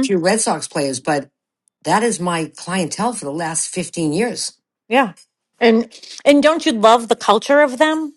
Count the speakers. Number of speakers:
two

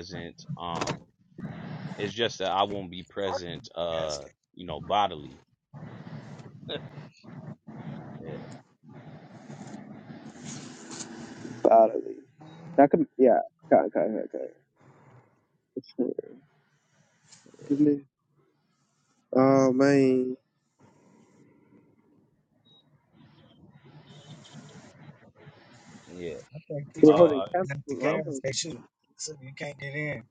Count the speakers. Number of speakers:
three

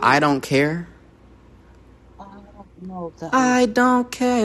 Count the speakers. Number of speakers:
two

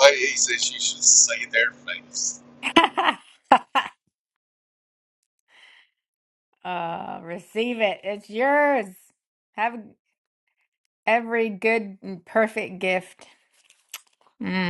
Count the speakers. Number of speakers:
two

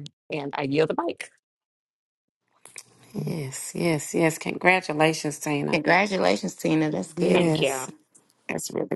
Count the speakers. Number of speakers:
three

